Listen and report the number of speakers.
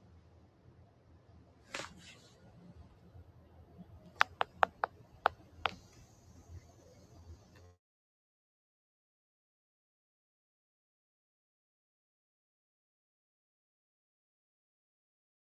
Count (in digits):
0